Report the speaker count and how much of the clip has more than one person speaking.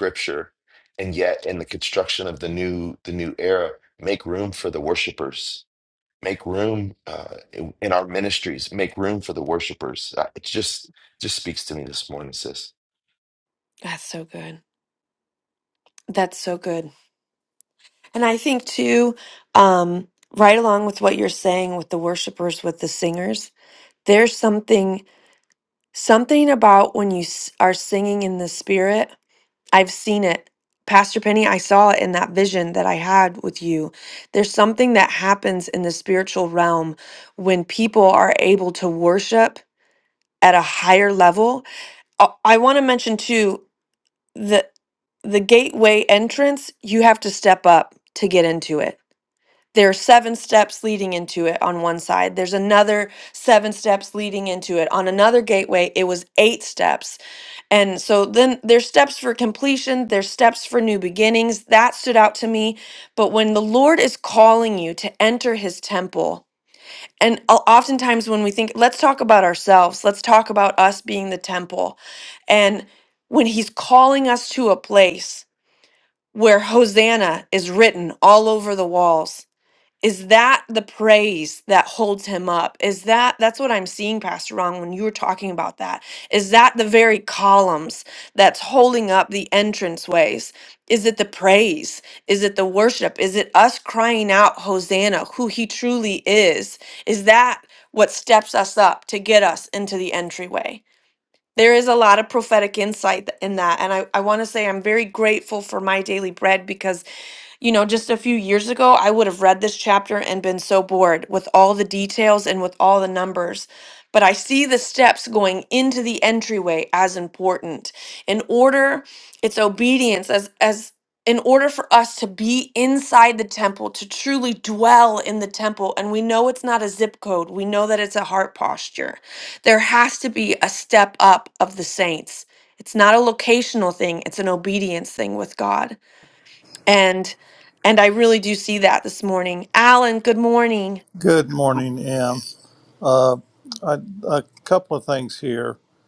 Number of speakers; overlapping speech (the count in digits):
3, no overlap